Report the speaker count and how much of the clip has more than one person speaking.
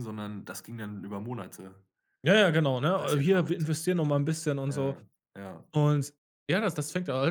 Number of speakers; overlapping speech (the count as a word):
two, about 13%